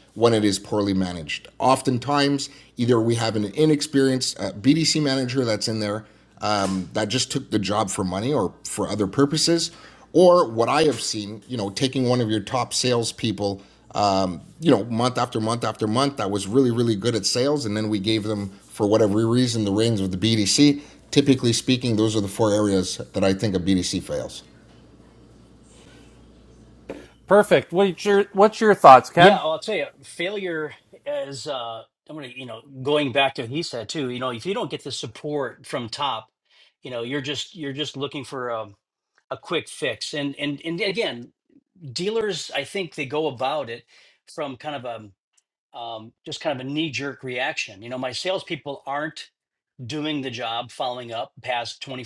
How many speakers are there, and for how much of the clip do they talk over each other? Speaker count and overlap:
3, under 1%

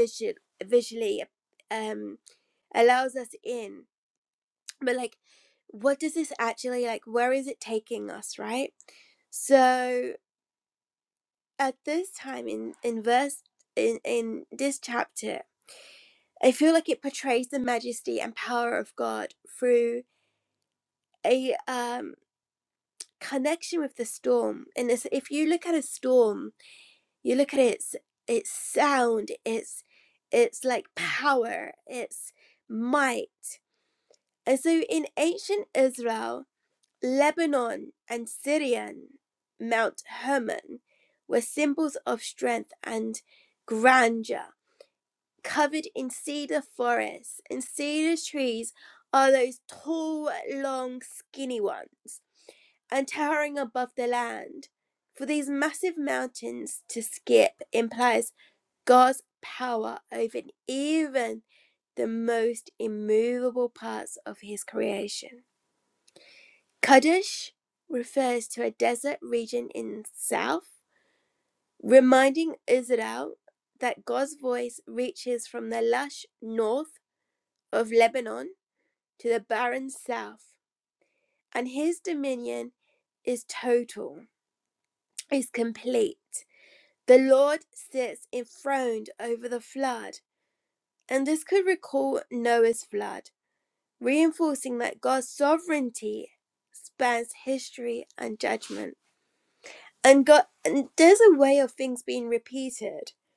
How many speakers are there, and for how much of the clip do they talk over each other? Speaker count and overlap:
1, no overlap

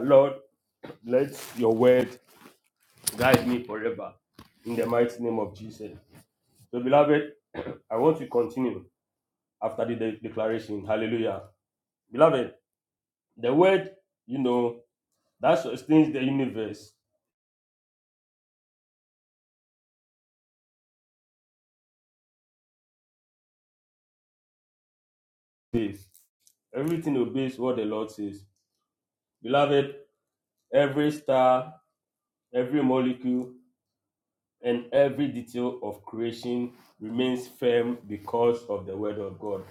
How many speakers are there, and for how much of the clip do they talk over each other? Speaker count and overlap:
1, no overlap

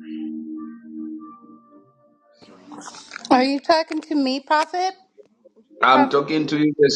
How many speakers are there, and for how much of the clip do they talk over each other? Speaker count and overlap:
2, about 4%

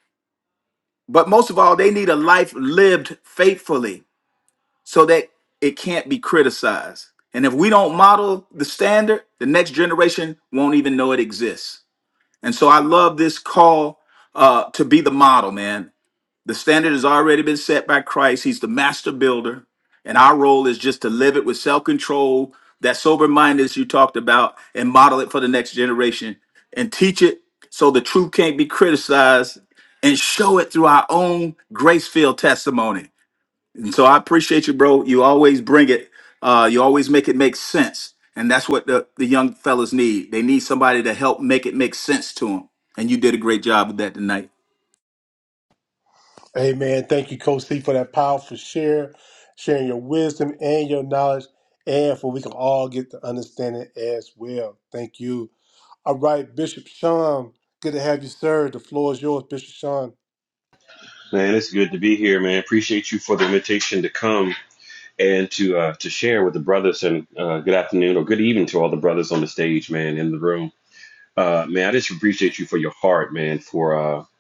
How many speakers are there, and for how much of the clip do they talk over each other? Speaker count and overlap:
3, no overlap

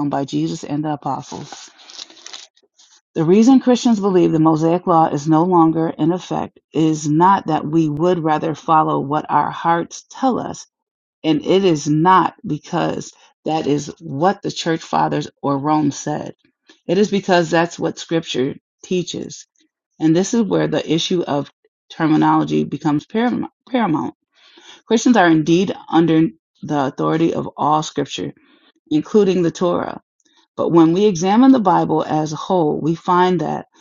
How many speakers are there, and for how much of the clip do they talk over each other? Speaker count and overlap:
1, no overlap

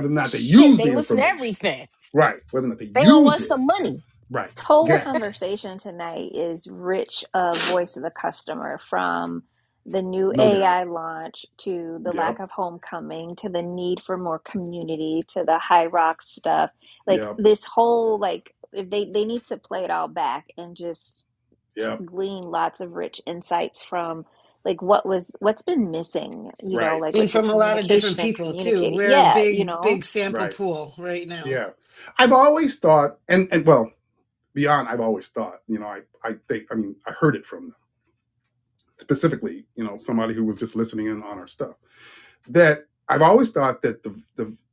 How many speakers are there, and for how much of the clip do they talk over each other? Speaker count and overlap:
4, about 16%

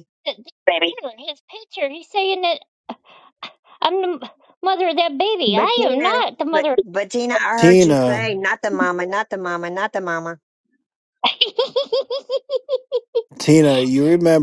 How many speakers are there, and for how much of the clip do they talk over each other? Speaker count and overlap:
3, about 14%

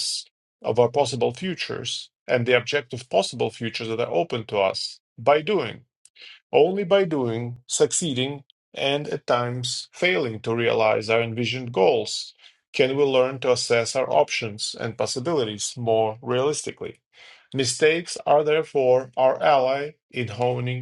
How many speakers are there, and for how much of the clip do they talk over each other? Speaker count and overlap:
1, no overlap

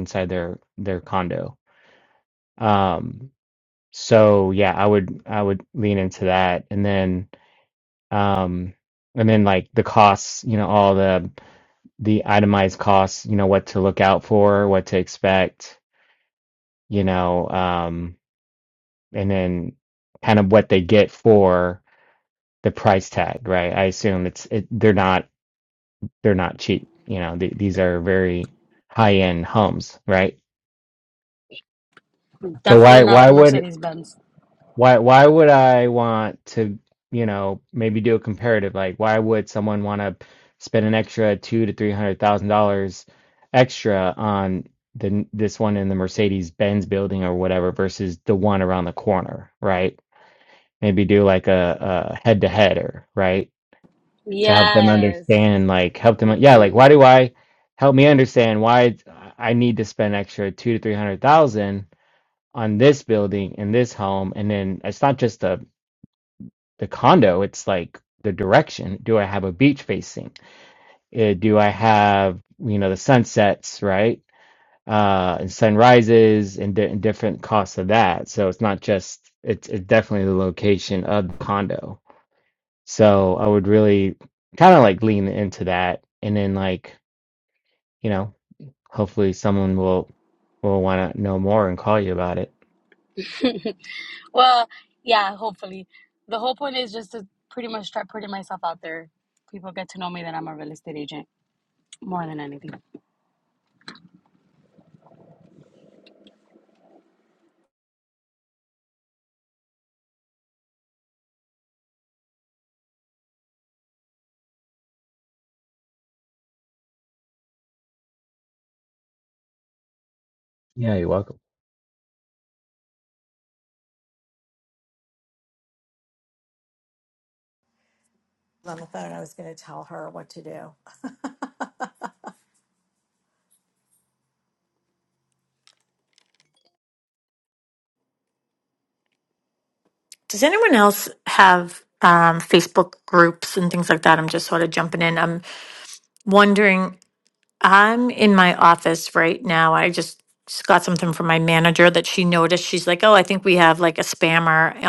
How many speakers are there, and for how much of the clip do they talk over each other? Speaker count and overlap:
4, about 1%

